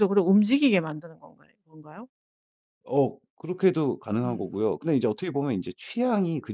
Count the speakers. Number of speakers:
2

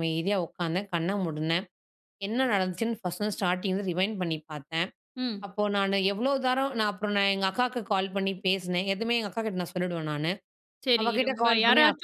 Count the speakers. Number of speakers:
2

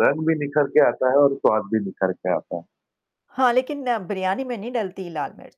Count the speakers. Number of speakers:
2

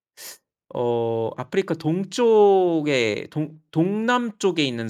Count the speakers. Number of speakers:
1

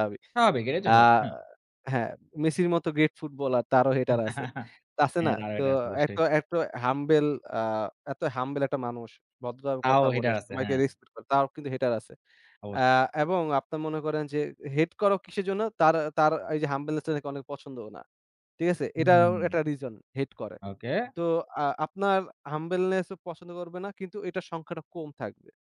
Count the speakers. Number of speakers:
2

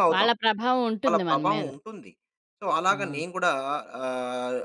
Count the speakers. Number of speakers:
2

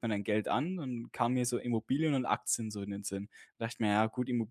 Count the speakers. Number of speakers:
1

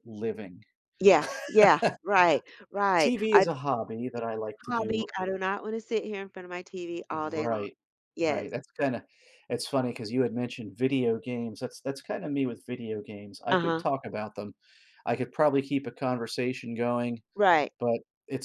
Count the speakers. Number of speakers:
2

